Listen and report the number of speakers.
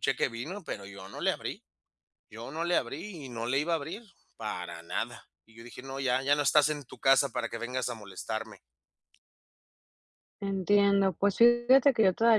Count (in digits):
2